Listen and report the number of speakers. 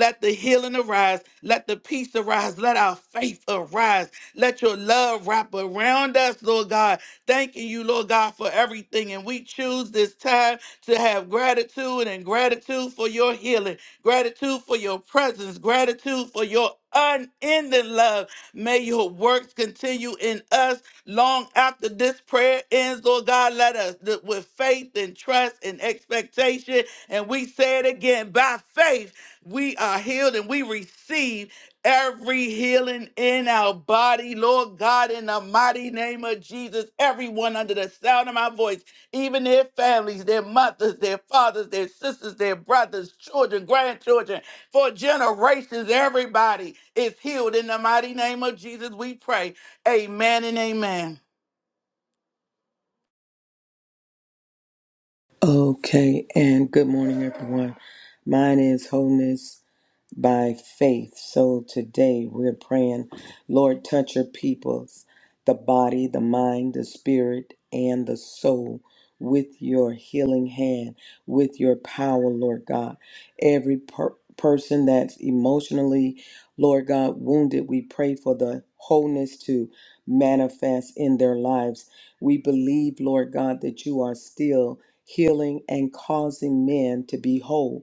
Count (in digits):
2